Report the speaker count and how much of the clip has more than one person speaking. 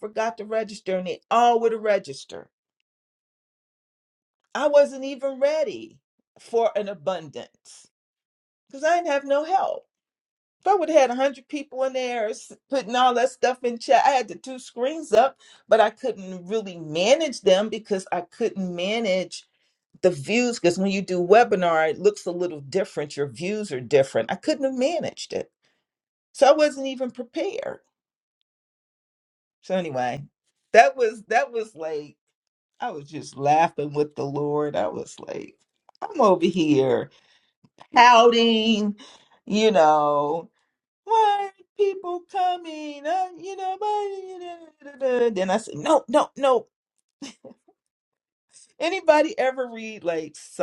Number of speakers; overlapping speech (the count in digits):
1, no overlap